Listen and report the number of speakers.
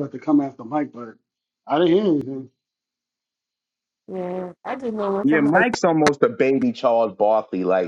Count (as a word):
three